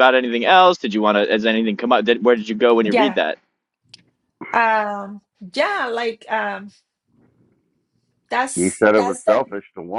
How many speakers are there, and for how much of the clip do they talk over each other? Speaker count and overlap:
3, about 8%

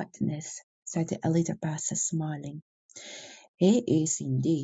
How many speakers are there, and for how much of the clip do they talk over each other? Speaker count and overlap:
1, no overlap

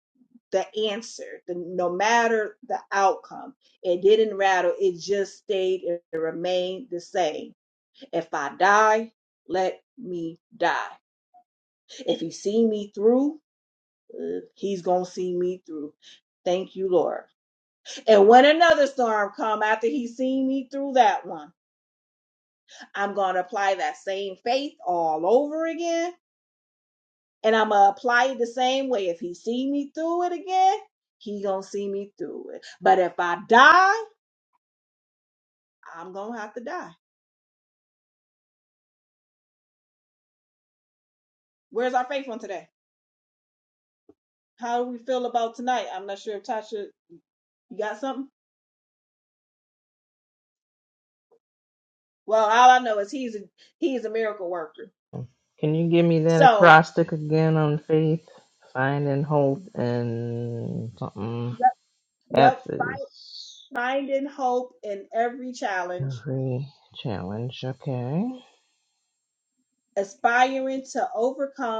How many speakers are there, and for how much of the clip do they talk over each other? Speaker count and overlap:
2, about 1%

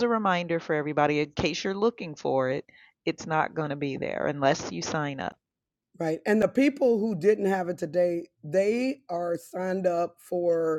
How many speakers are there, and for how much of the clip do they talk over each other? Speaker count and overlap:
2, no overlap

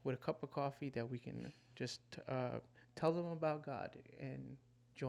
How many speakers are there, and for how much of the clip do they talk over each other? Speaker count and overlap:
1, no overlap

